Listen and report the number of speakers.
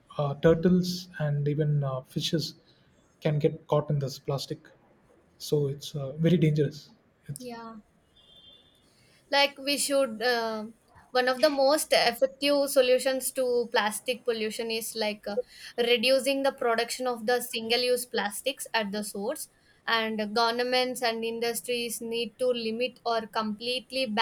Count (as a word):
two